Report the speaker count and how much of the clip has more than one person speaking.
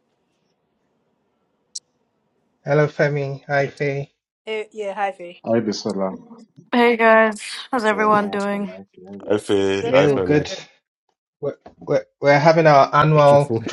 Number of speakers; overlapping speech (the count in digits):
5, about 11%